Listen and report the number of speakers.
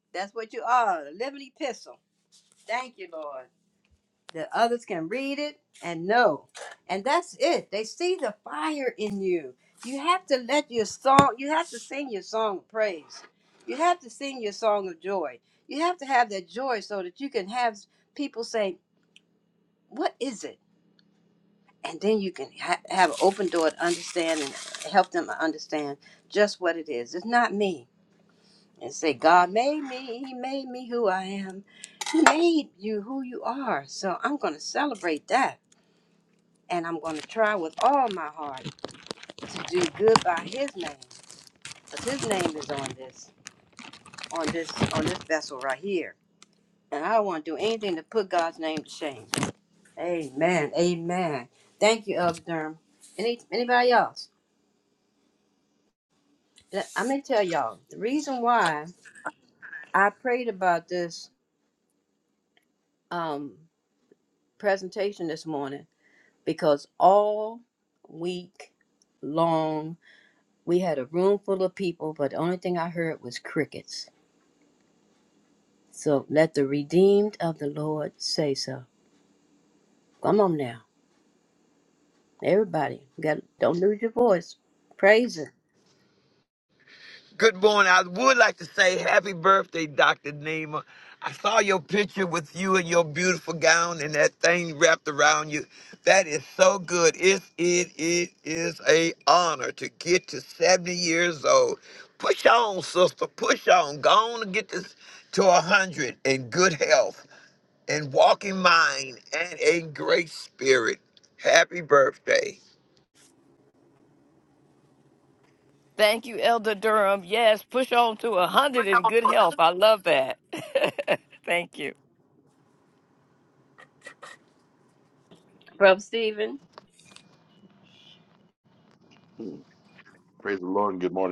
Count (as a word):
four